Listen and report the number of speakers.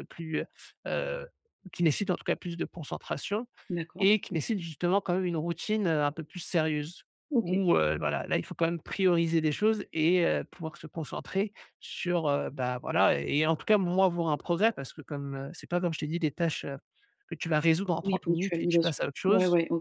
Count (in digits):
2